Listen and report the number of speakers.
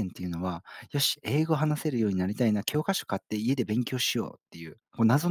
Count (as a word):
one